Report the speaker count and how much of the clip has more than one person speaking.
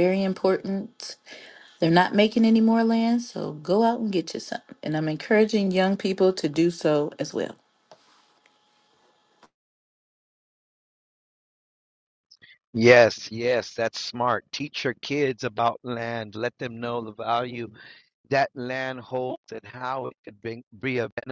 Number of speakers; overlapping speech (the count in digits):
2, no overlap